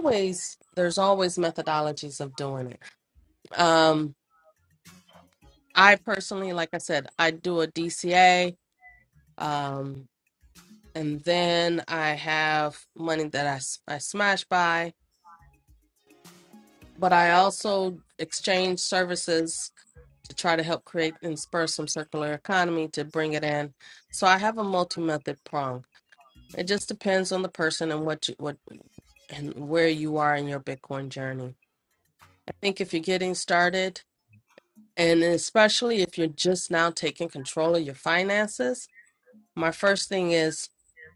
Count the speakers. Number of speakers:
1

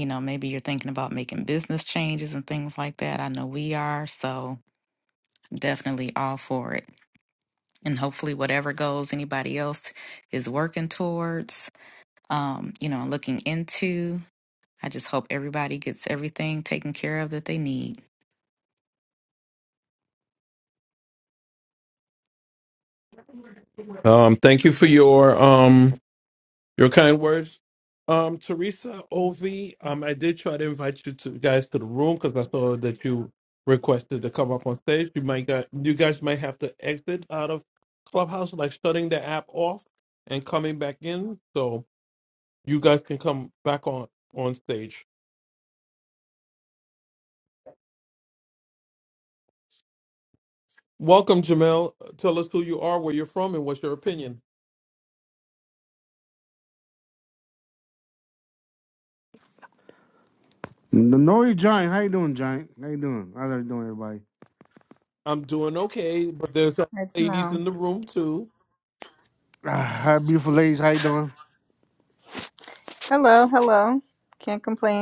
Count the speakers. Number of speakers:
4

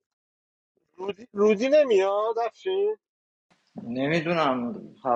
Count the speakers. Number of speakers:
2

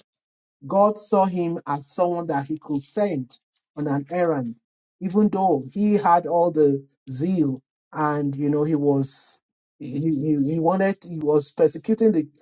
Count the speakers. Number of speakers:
1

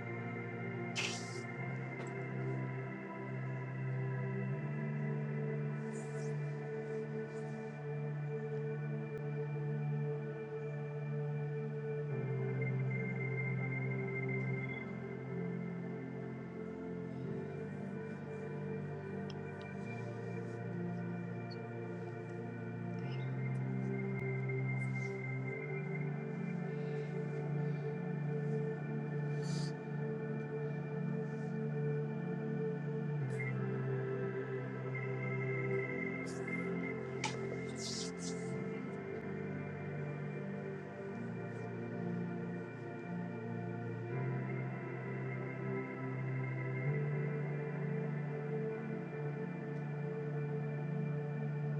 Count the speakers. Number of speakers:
0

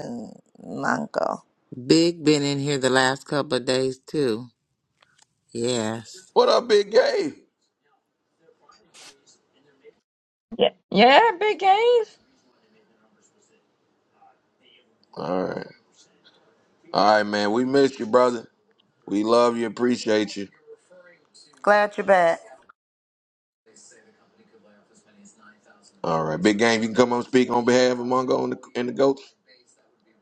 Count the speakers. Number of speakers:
4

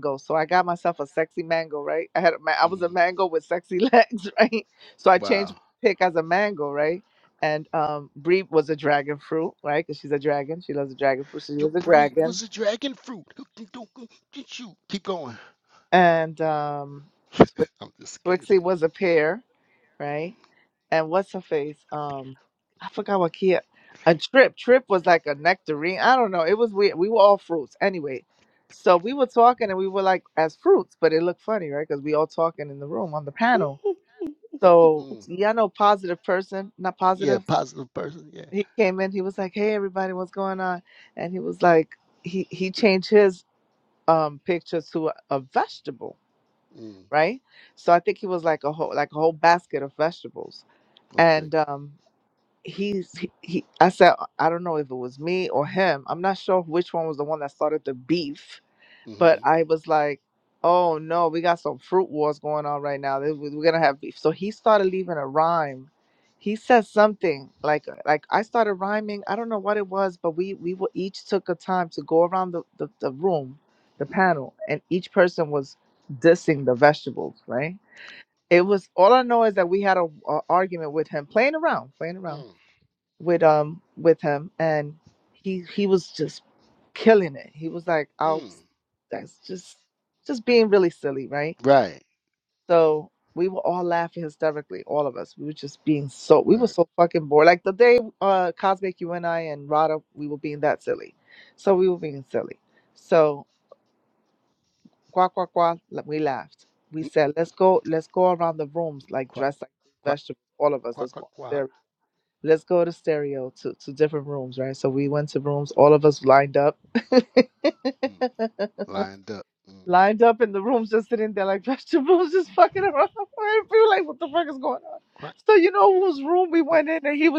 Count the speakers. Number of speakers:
2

